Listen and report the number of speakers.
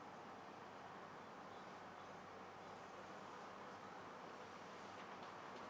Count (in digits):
0